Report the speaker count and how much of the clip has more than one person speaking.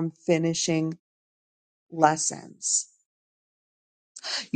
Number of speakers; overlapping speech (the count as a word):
one, no overlap